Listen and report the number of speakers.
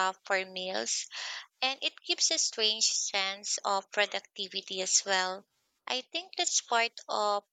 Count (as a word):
one